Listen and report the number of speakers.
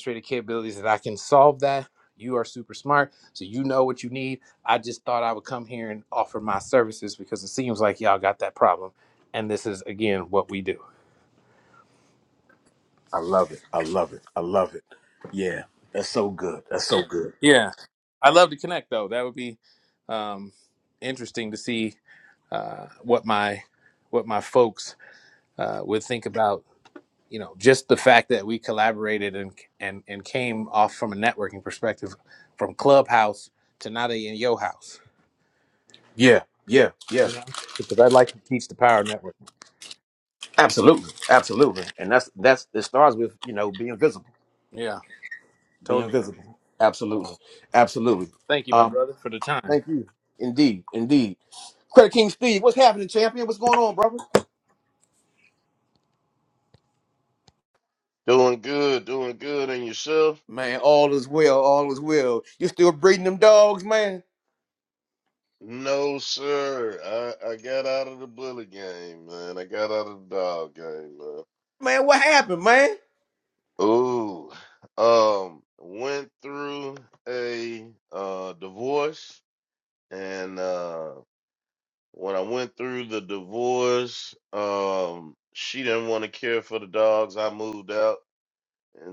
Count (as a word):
three